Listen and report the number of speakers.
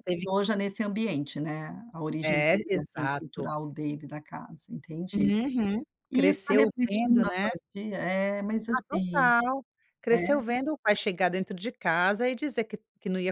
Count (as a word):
two